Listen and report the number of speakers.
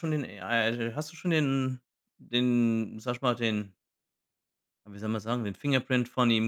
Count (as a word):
one